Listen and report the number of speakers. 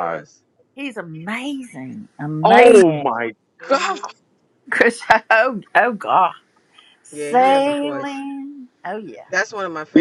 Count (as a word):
three